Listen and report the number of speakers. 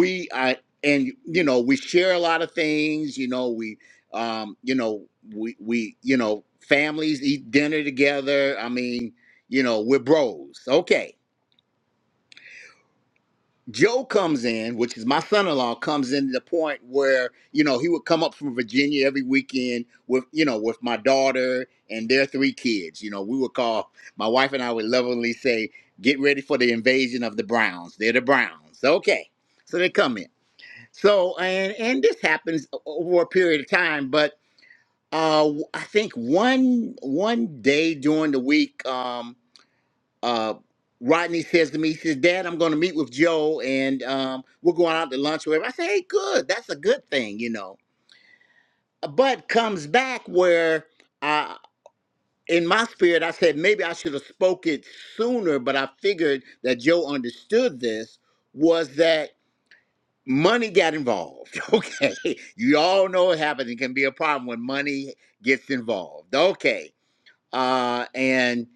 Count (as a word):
one